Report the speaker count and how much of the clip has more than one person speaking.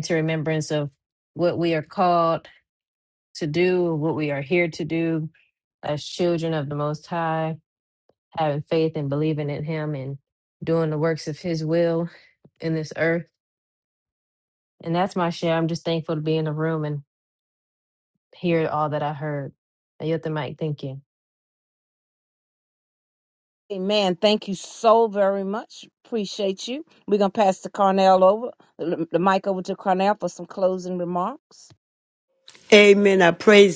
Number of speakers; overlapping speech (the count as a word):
three, no overlap